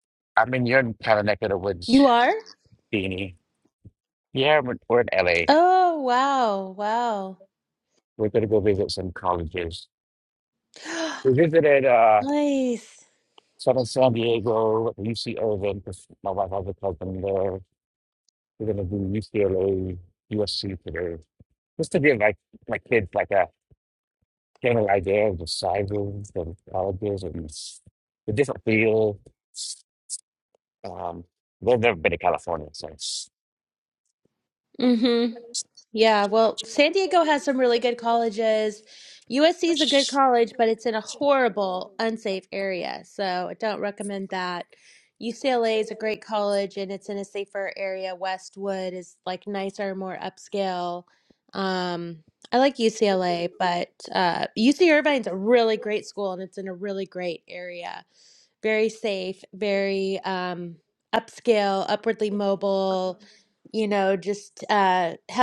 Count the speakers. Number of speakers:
2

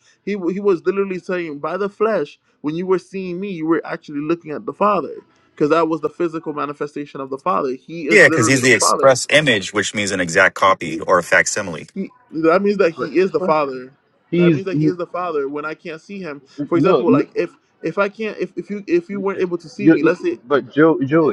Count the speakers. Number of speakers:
3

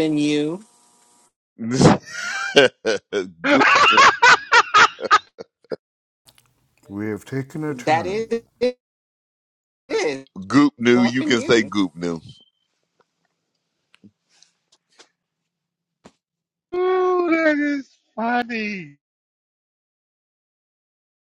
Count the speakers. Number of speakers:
4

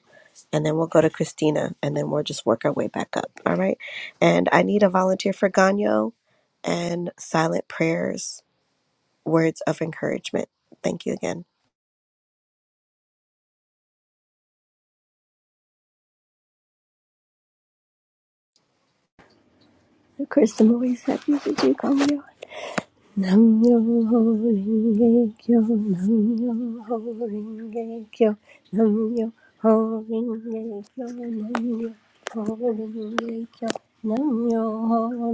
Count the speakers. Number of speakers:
2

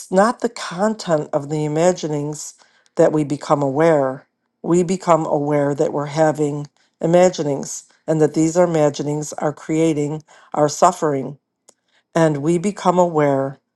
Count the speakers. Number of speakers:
1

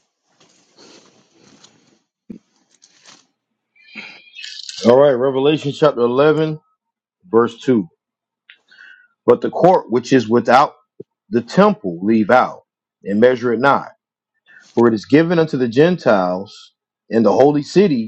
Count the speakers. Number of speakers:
1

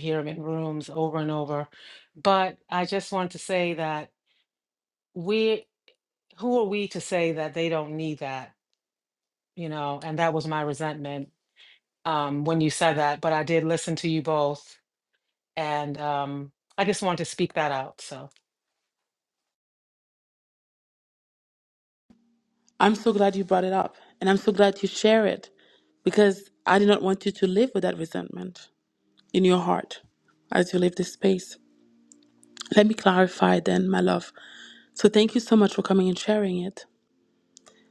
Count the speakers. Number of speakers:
2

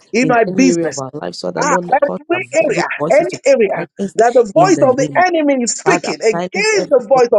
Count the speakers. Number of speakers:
2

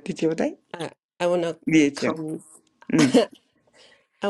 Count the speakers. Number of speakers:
2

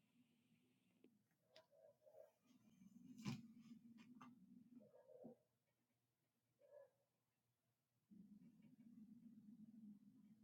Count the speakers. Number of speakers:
0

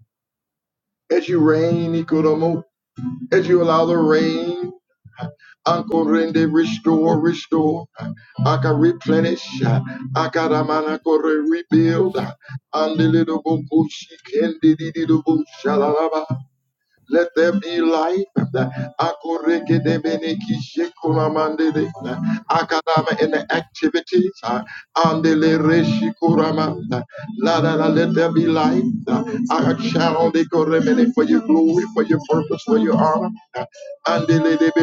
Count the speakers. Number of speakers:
1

